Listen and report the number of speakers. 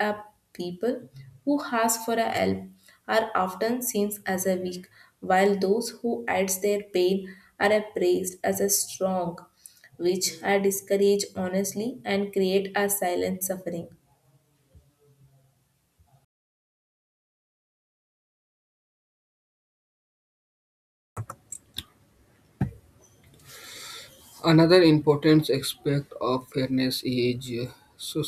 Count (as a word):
two